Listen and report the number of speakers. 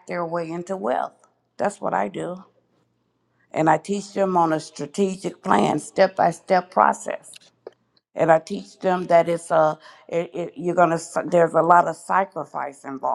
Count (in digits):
1